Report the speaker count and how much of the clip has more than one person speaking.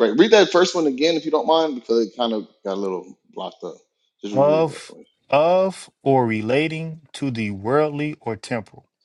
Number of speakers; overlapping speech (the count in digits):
2, about 6%